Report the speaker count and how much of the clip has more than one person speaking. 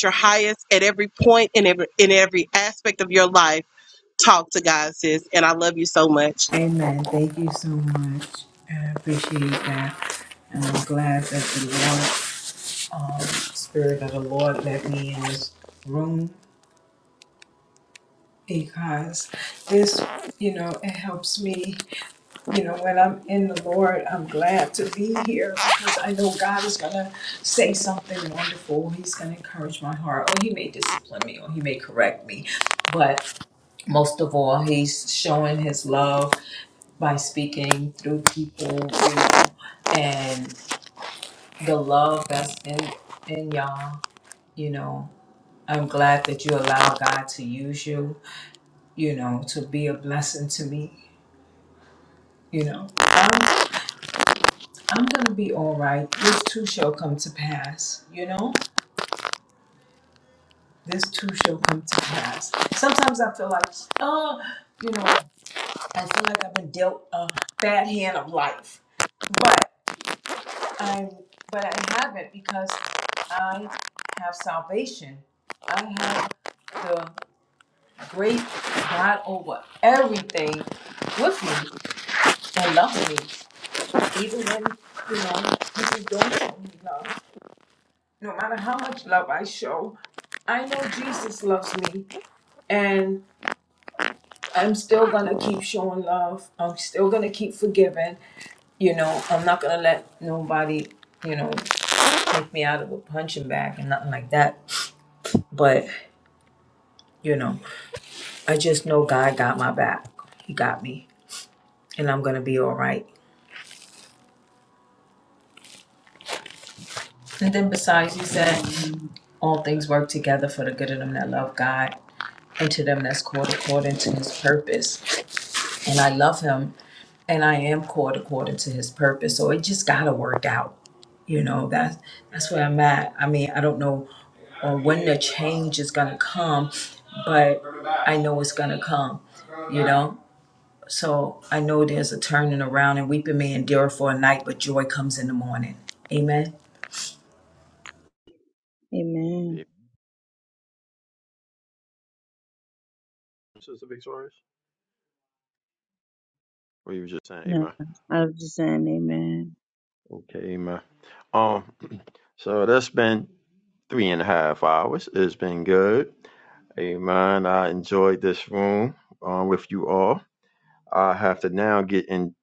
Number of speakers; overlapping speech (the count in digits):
4, under 1%